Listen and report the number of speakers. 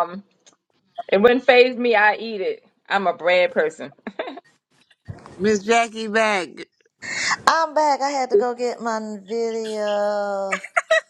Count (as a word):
three